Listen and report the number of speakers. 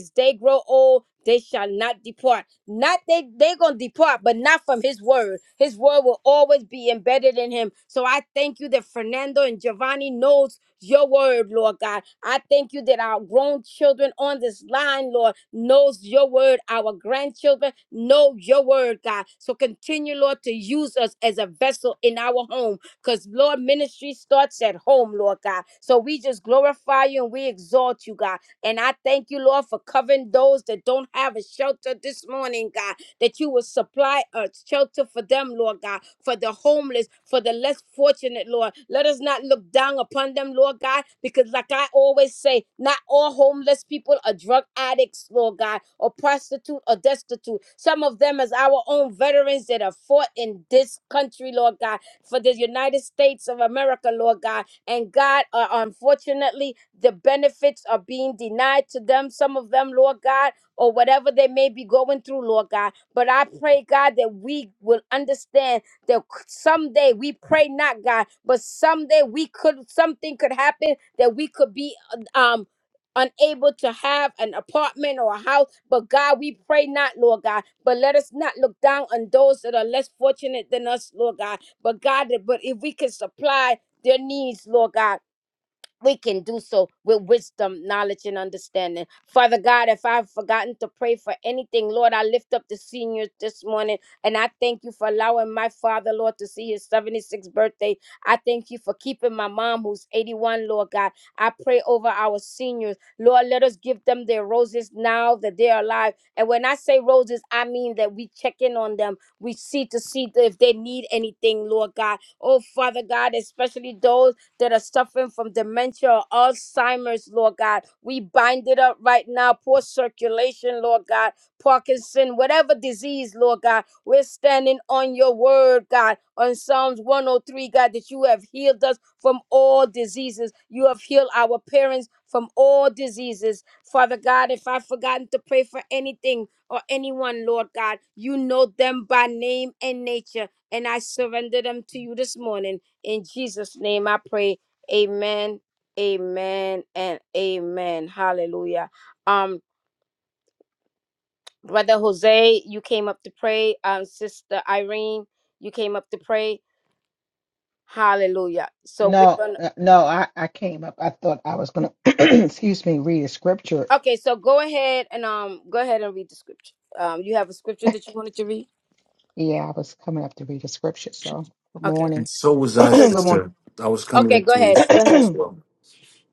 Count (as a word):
three